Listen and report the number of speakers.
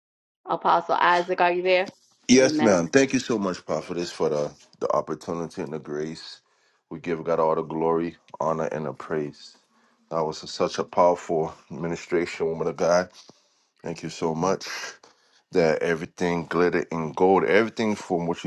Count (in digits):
2